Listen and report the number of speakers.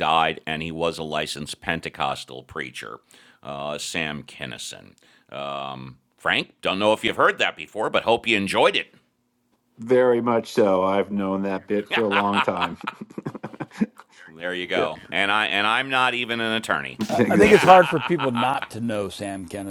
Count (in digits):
3